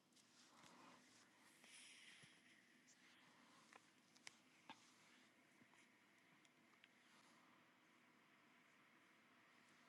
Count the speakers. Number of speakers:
0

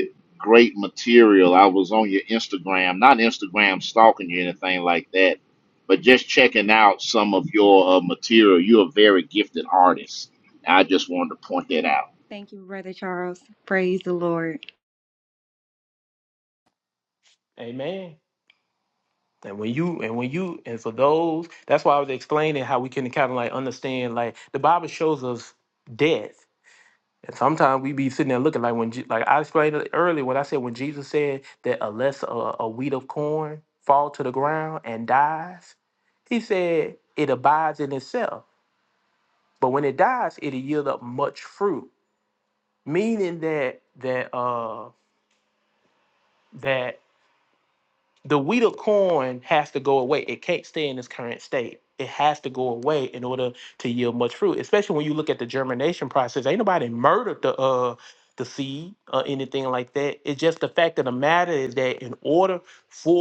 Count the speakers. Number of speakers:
3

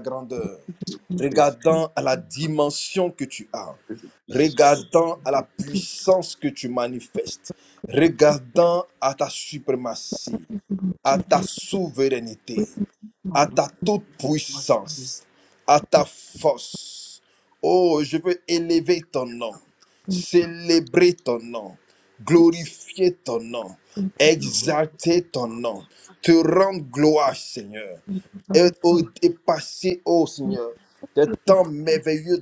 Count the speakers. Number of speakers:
2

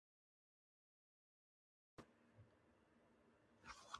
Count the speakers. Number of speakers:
0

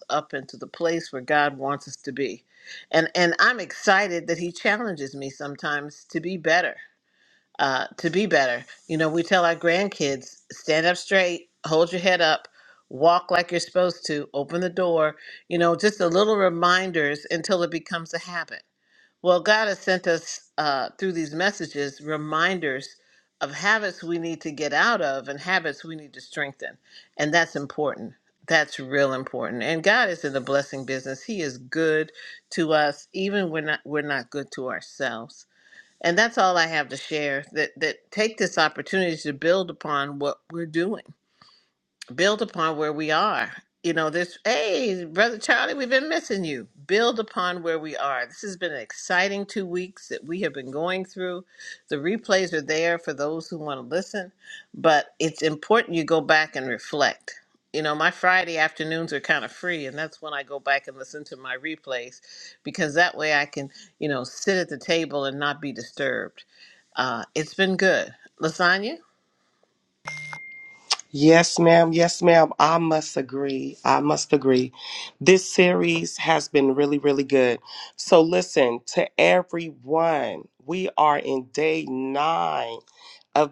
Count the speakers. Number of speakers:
2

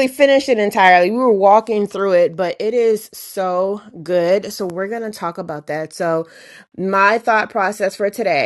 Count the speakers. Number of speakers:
1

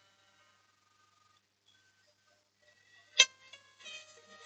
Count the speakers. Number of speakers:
0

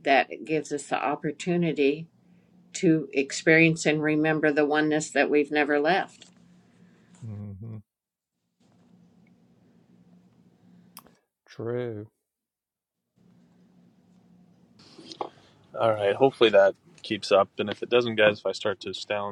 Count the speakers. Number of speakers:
3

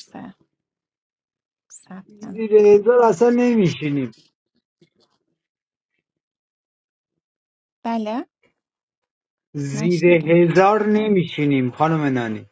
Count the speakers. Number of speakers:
2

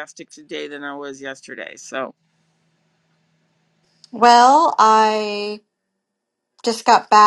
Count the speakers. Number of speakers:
2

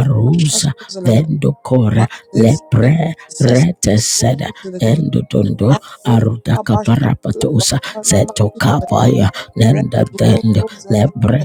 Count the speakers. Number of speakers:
2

